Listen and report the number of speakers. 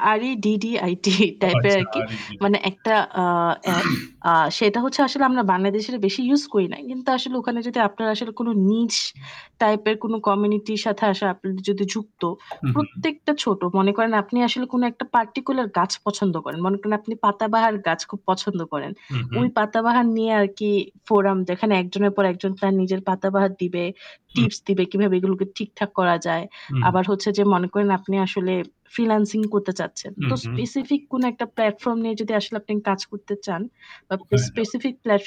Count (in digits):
2